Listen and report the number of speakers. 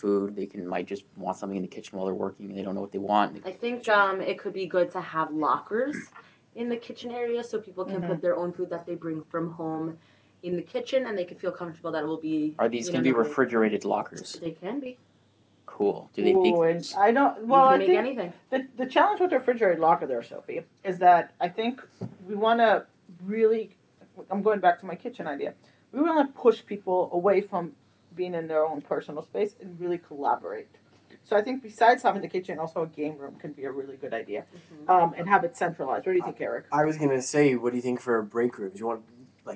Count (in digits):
4